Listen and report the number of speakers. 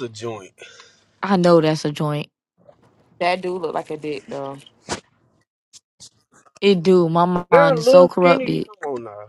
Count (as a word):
three